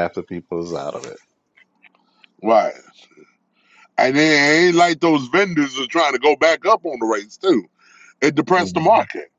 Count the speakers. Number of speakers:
two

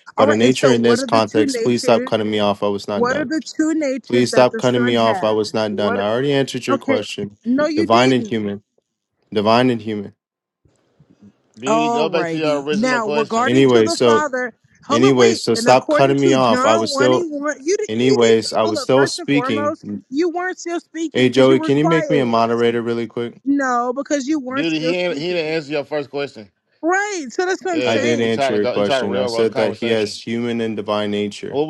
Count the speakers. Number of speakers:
three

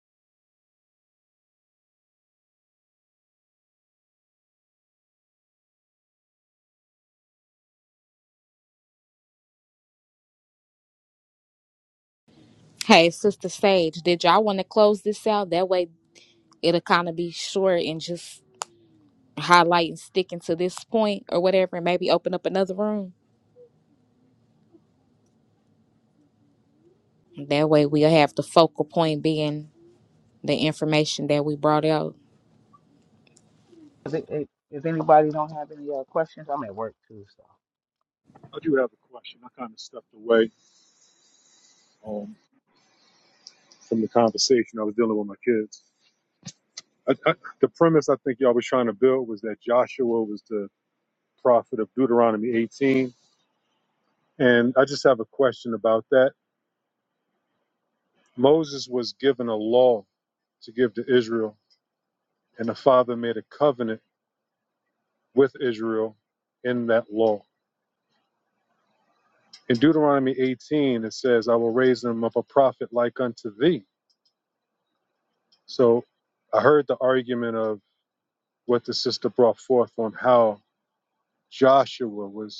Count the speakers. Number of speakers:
three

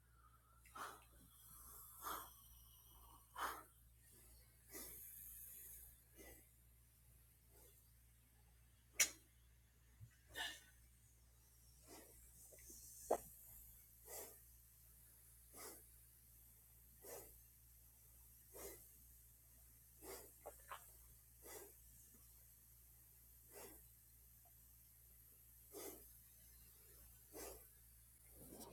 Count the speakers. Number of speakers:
zero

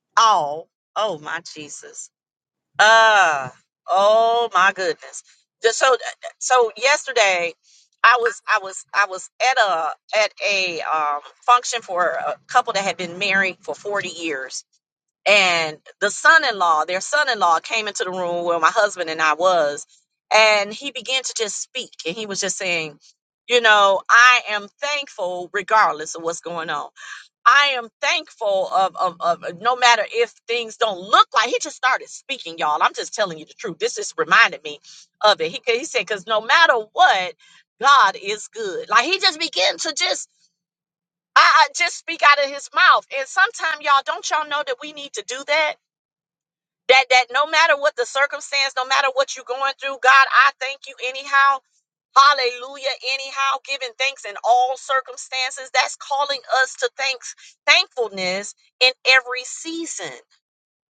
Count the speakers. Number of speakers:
one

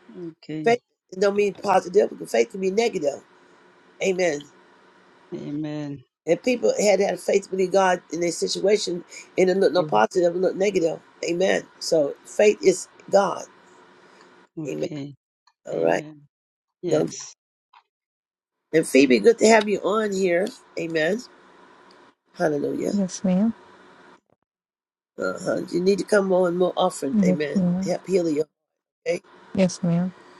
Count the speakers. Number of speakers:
three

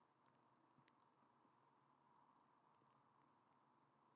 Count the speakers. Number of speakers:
zero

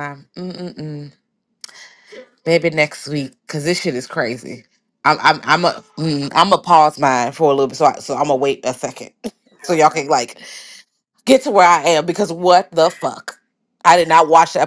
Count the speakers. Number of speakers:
one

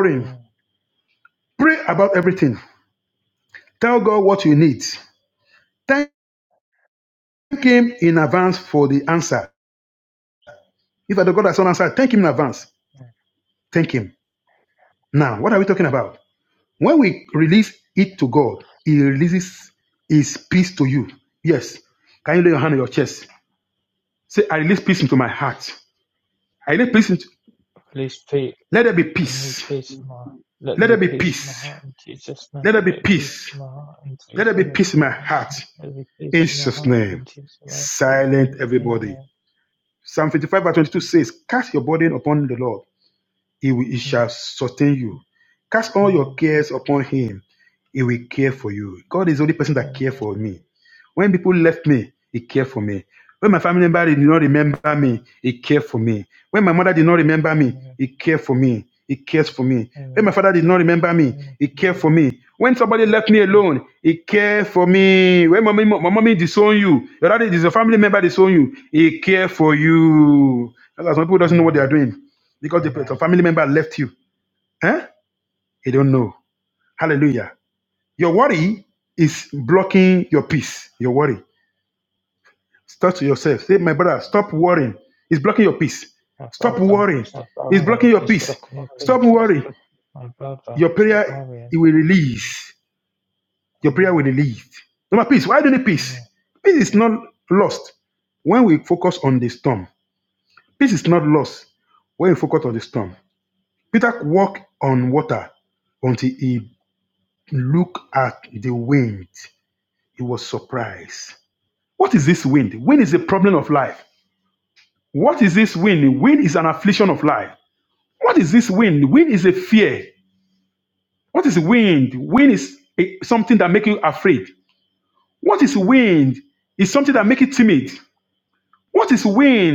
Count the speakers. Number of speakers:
two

